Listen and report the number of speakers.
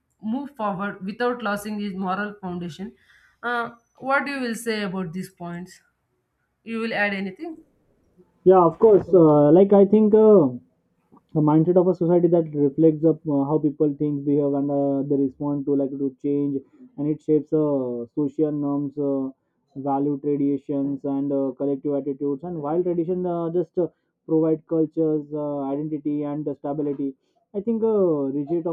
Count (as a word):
two